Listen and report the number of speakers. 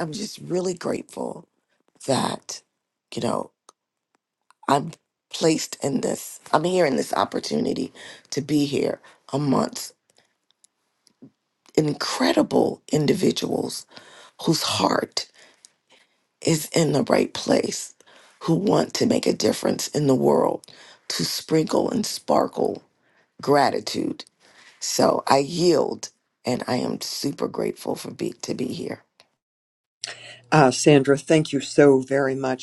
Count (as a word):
two